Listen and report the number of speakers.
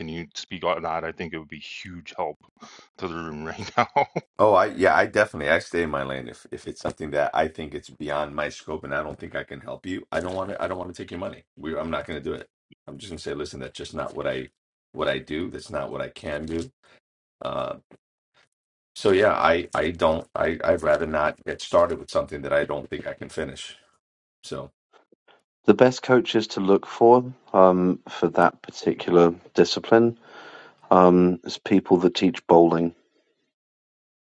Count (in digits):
3